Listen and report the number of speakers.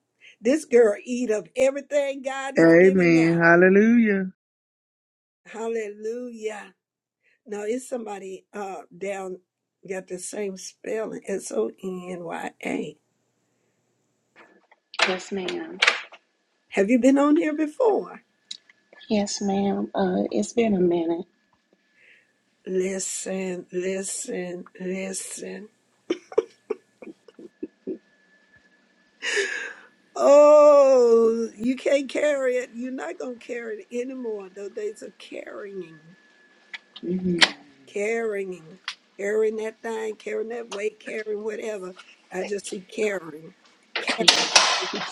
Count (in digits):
3